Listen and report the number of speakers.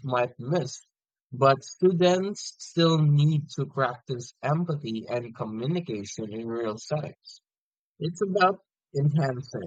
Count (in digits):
1